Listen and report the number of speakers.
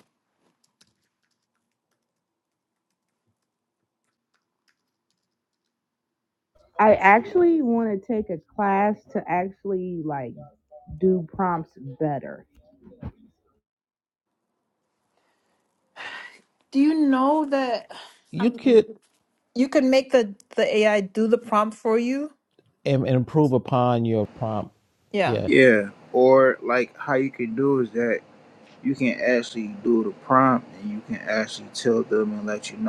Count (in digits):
4